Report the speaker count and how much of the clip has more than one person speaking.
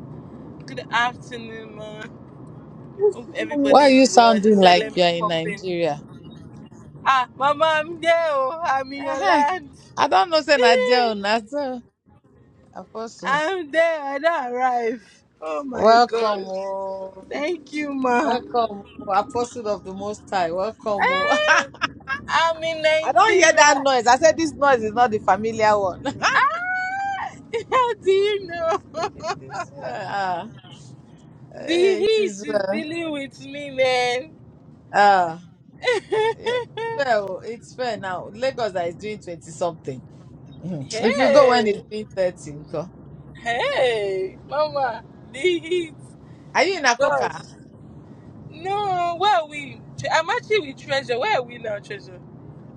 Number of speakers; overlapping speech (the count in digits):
2, about 16%